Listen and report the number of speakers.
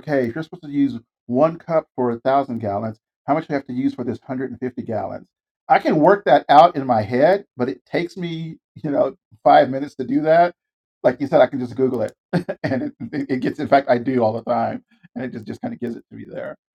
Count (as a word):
one